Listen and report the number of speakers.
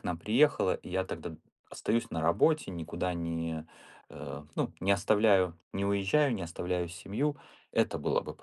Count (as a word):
one